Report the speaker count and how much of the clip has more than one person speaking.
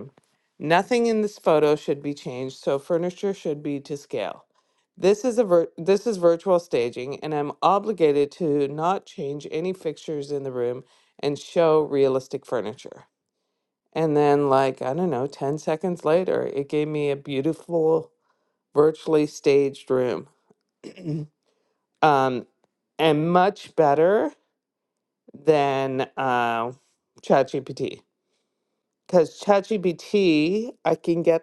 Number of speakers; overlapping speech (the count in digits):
1, no overlap